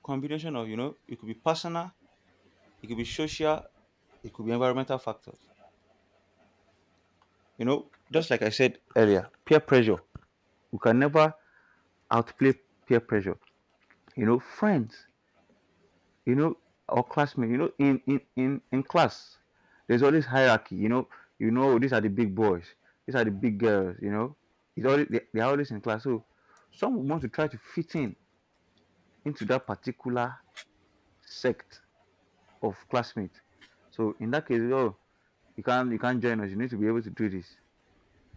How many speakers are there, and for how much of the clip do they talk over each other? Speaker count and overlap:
one, no overlap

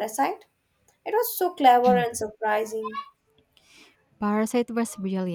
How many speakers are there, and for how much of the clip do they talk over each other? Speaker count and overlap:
two, no overlap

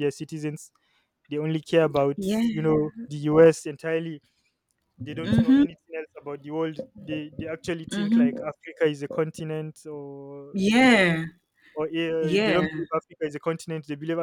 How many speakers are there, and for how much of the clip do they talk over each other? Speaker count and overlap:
two, about 15%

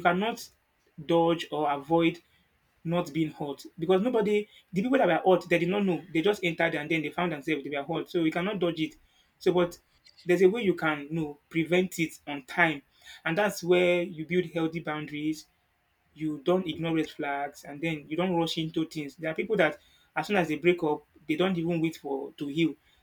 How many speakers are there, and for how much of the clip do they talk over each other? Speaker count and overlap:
one, no overlap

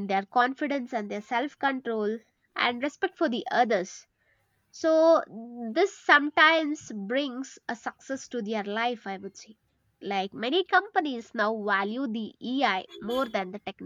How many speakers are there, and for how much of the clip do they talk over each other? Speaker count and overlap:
one, no overlap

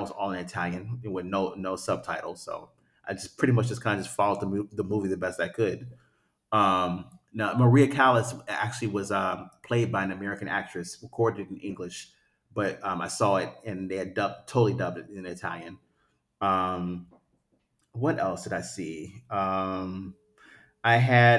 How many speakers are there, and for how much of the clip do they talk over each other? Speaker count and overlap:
one, no overlap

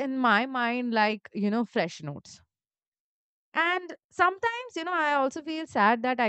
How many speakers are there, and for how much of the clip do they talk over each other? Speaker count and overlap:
one, no overlap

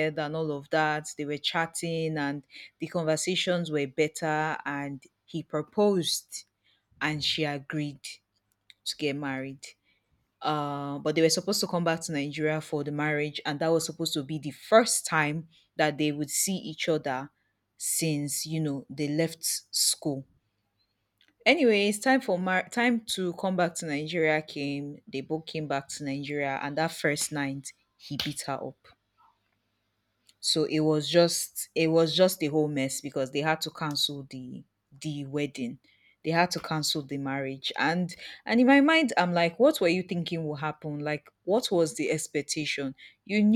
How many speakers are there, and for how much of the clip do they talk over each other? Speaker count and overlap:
one, no overlap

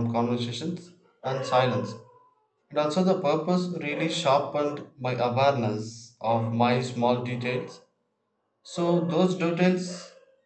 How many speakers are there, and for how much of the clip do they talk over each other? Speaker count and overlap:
one, no overlap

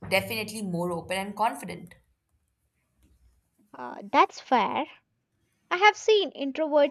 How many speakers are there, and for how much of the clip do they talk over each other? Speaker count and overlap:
two, no overlap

